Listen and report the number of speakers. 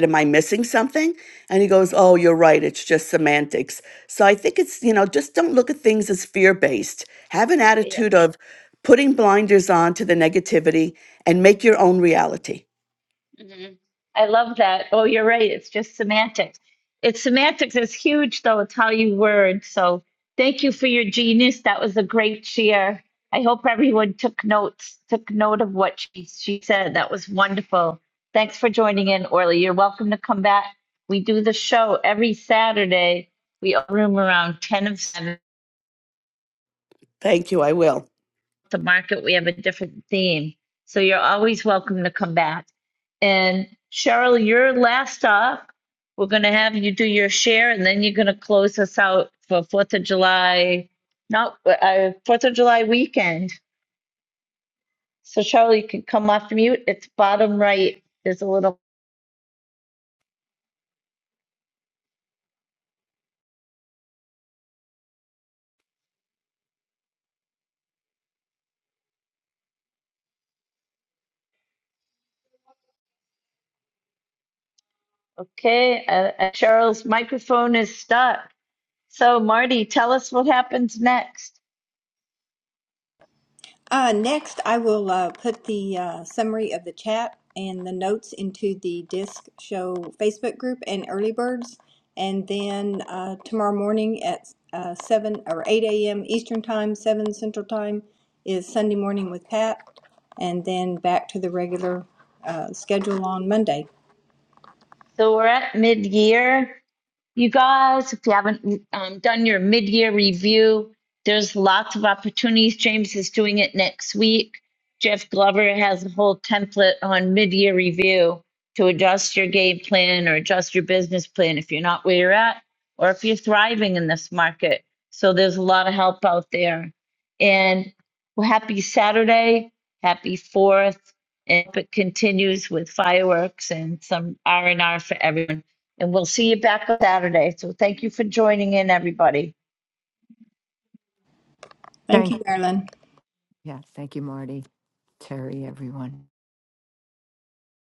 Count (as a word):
four